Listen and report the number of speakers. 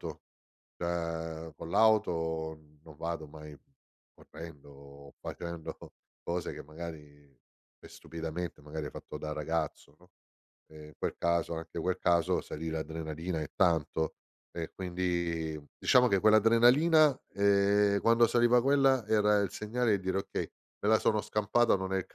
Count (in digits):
1